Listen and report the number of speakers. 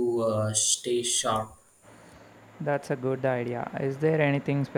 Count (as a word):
two